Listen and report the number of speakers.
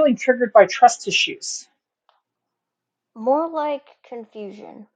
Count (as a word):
two